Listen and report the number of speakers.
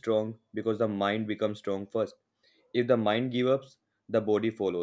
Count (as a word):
one